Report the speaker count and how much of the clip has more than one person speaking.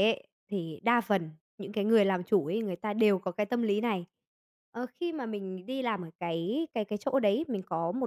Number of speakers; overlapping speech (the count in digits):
1, no overlap